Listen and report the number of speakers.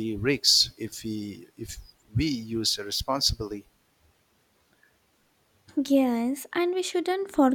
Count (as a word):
two